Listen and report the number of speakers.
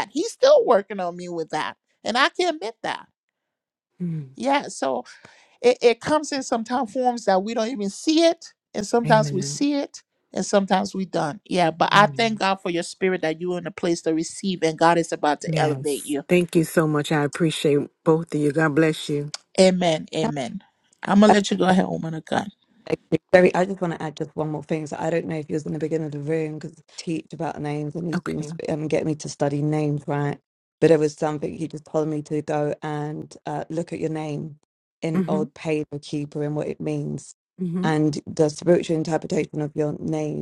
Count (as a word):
three